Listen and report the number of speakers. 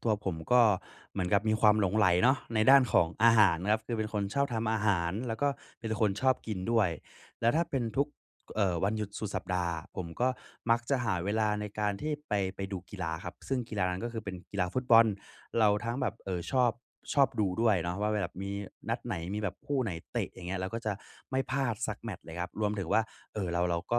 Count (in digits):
1